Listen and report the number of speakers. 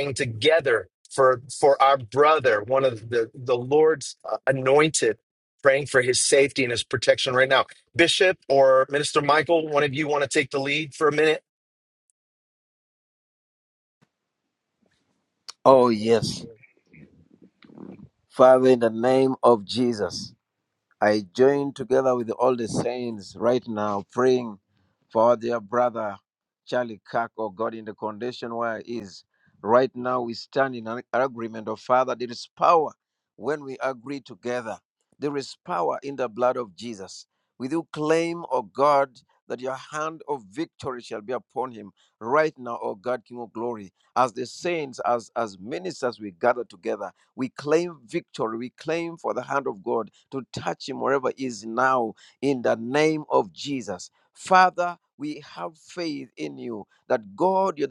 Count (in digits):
2